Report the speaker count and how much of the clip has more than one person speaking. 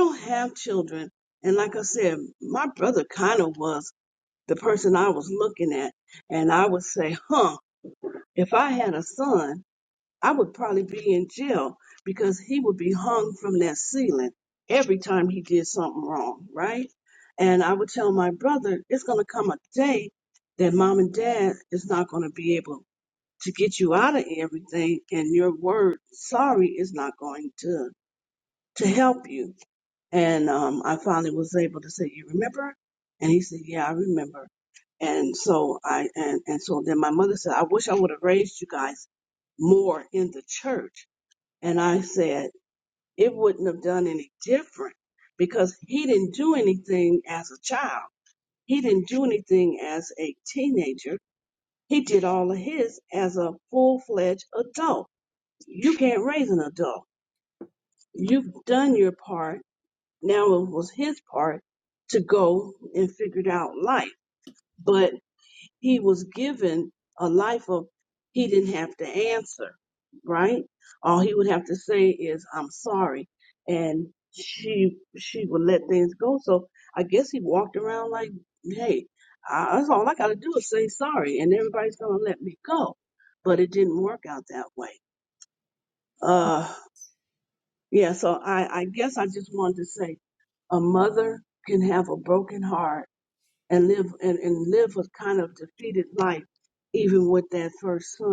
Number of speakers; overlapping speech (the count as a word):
one, no overlap